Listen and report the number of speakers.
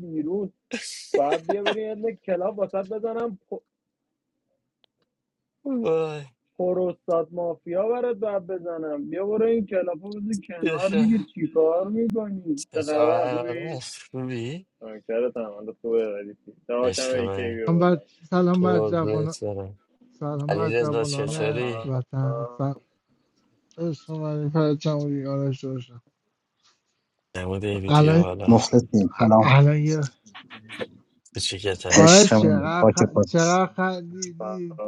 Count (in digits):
4